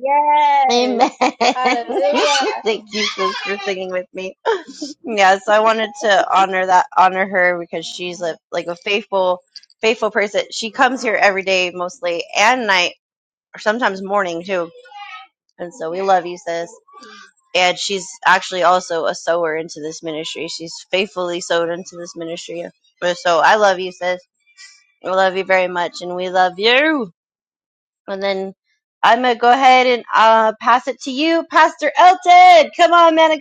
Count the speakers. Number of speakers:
two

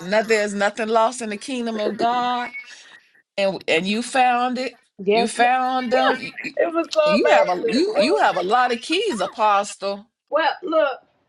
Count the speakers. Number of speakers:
two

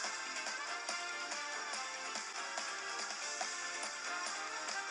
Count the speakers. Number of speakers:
zero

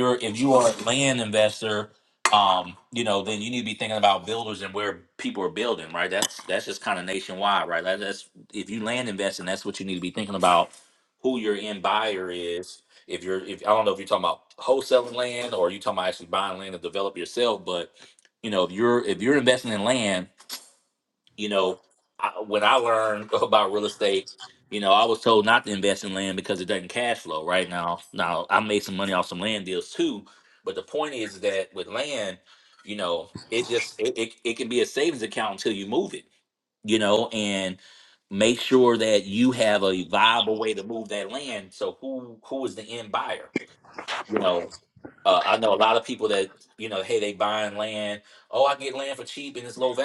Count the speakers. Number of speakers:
one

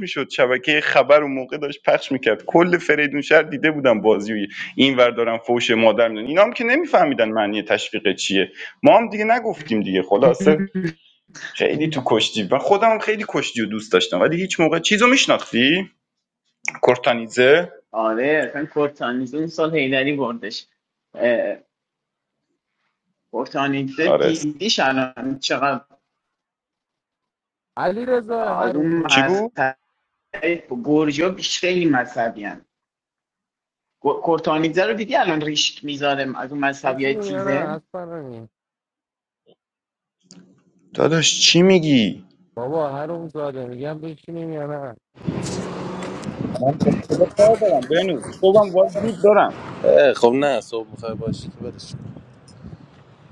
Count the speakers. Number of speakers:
three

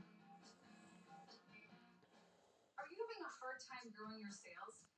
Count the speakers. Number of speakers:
zero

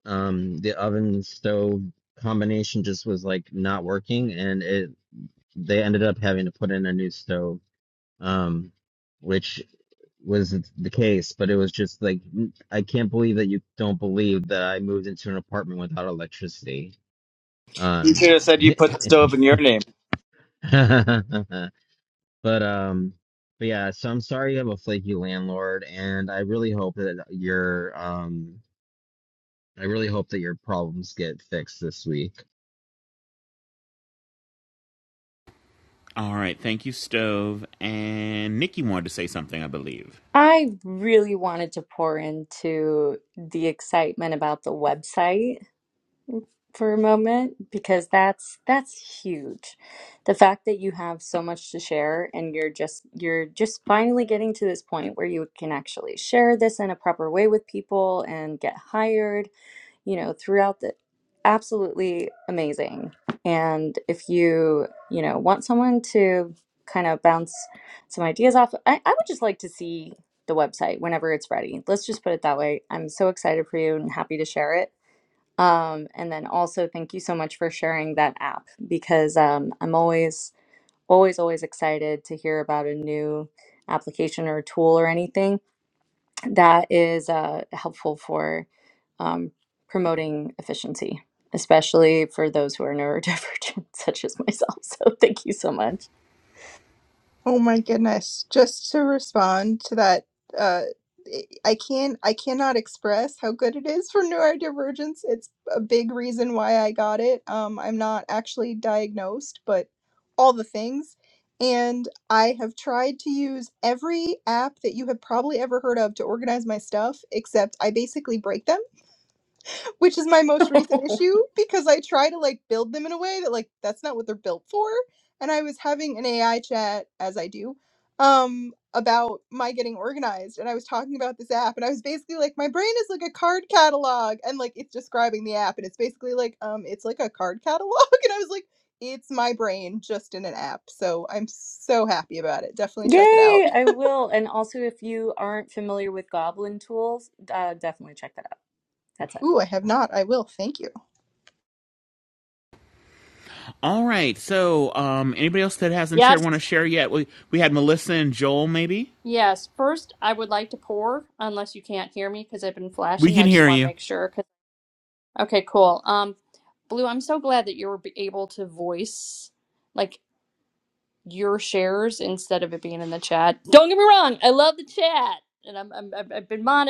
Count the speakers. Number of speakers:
six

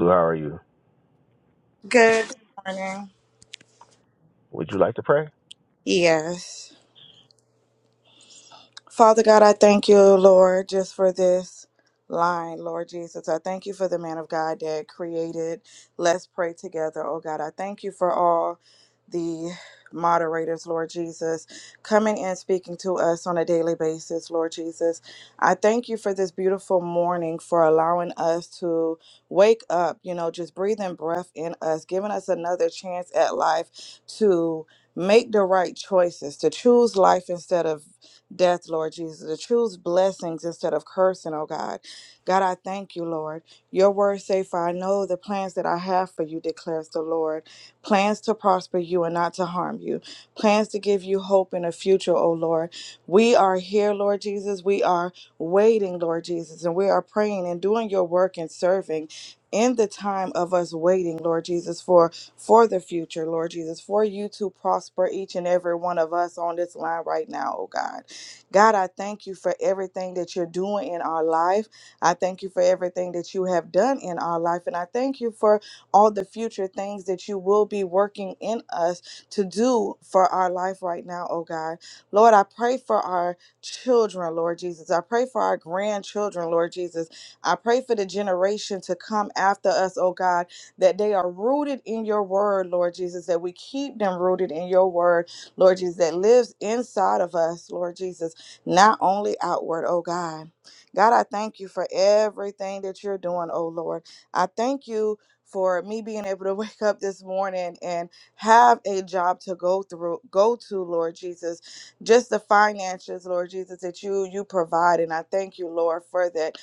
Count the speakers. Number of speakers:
two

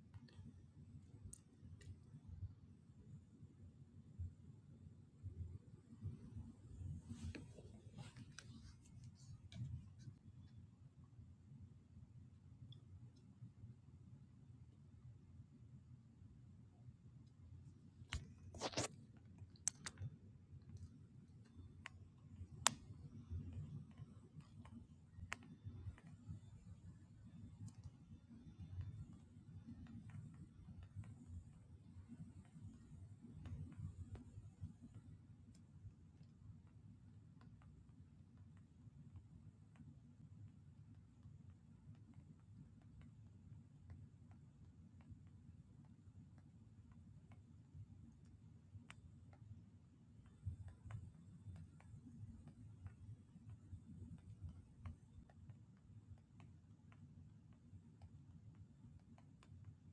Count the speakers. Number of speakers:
zero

